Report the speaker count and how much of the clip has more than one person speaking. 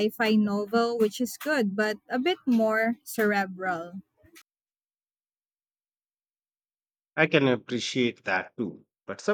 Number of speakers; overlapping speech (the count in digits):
2, no overlap